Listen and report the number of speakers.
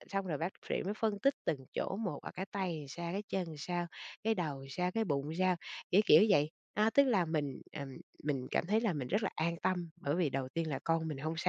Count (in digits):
1